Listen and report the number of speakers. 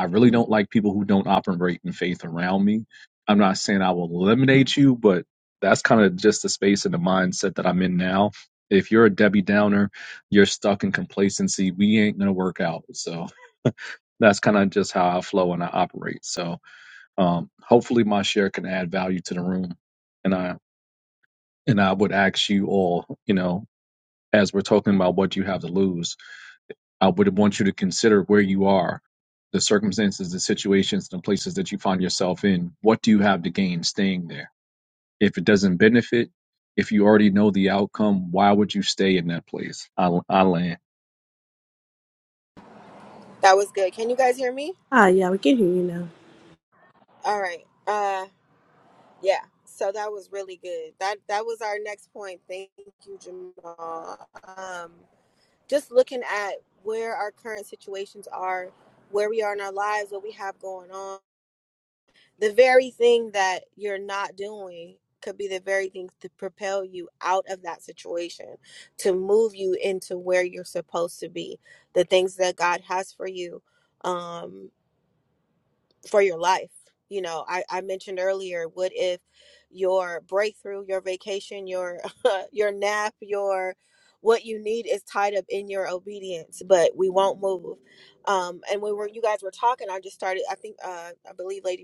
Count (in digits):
3